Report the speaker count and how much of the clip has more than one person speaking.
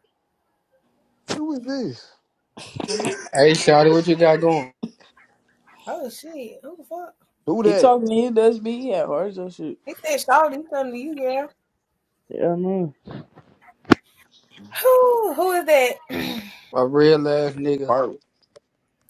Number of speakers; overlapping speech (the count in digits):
4, about 1%